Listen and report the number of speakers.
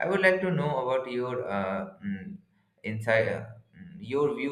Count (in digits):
1